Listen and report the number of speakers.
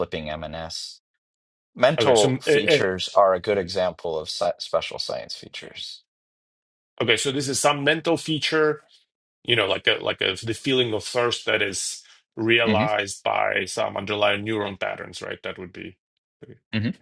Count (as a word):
two